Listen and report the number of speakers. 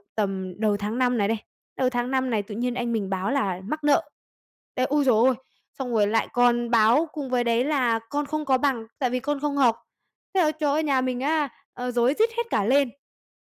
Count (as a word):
one